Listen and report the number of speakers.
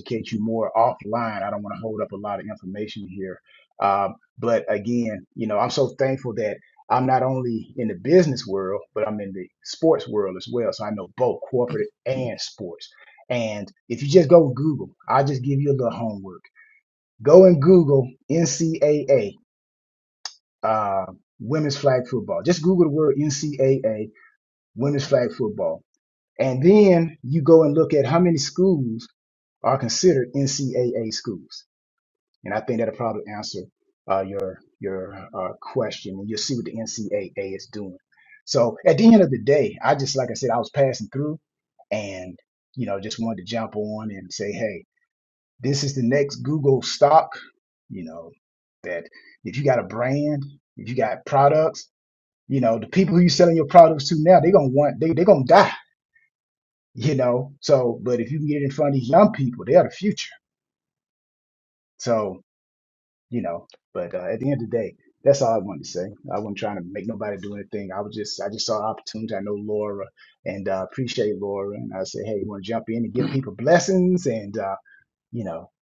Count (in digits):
1